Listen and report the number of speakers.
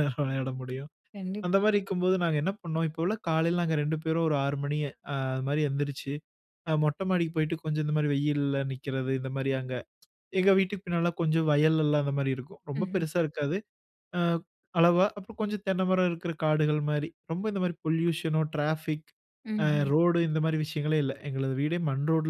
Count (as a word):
two